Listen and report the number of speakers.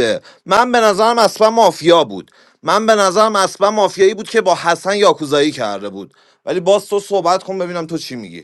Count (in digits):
1